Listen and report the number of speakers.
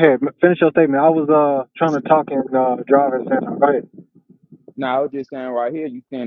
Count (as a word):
two